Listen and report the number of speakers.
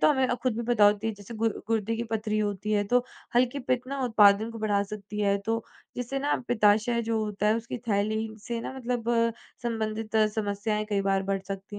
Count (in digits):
1